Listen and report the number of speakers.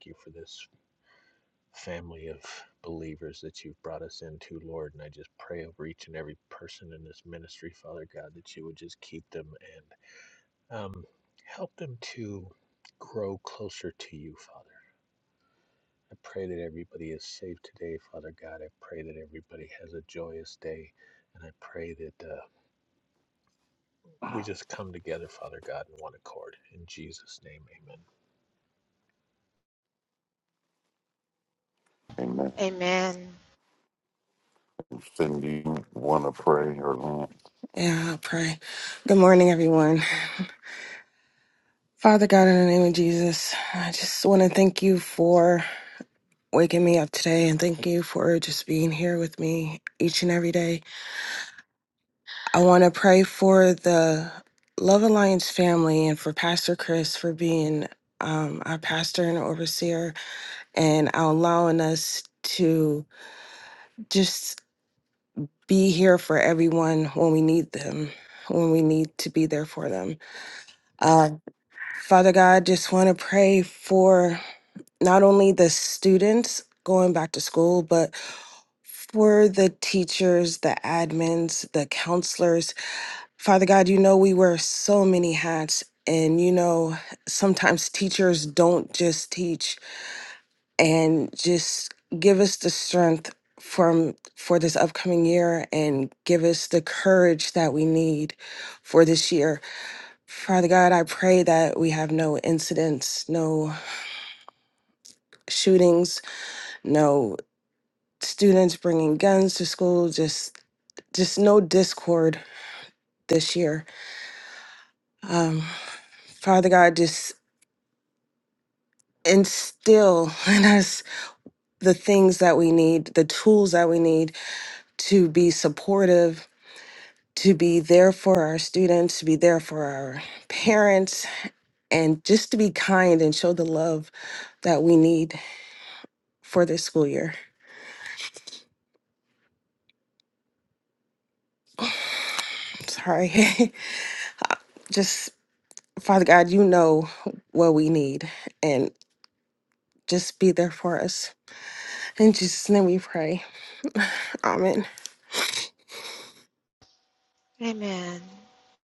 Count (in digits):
4